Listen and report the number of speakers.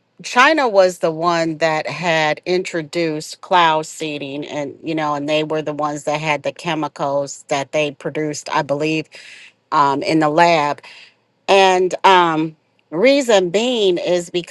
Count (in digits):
1